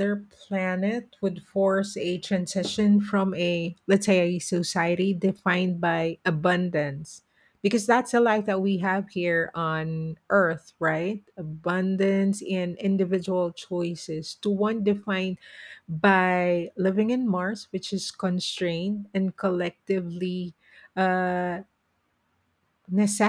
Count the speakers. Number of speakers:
1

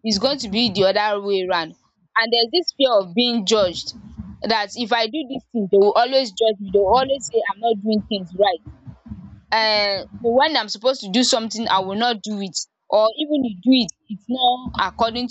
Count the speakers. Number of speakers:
1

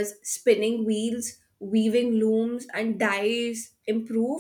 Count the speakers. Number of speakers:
1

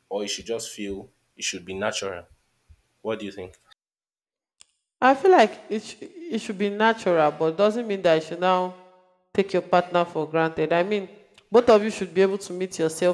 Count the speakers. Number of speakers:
2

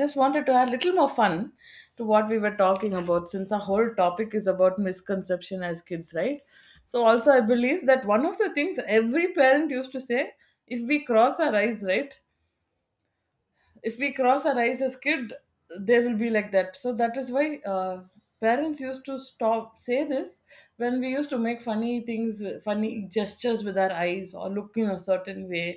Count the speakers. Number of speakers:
1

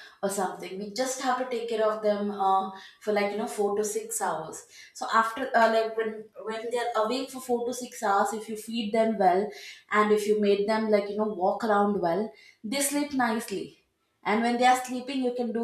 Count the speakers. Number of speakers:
1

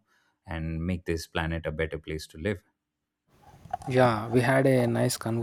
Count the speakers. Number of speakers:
2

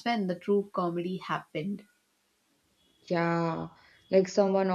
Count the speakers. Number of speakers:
2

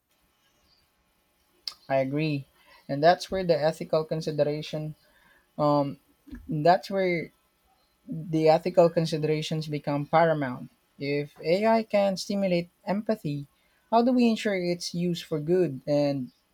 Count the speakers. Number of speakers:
1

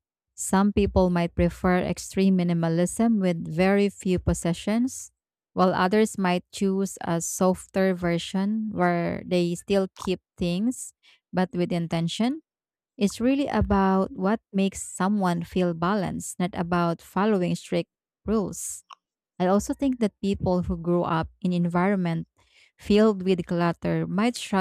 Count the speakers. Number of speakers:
1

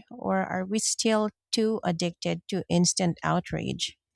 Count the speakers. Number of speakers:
1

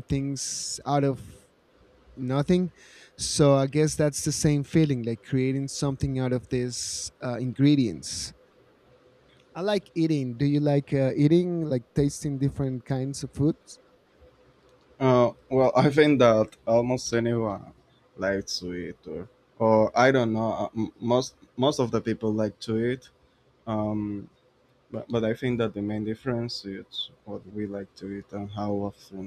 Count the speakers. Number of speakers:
2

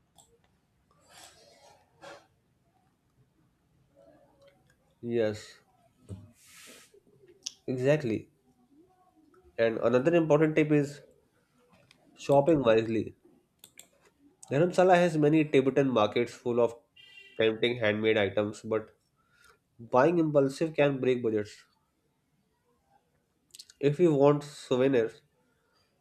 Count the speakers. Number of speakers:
1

